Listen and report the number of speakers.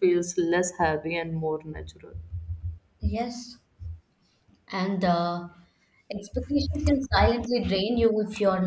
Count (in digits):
2